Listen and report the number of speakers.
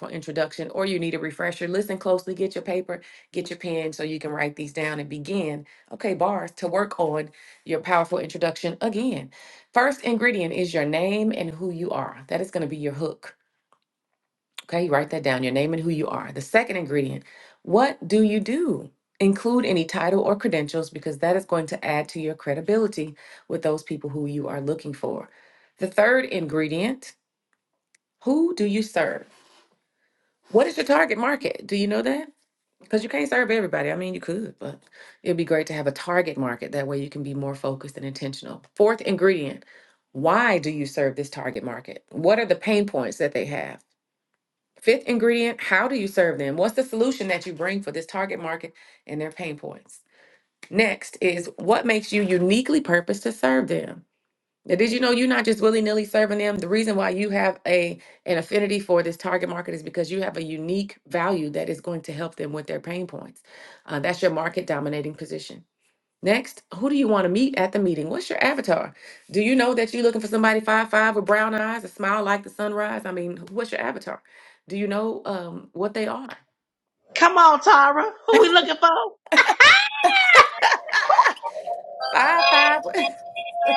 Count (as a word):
two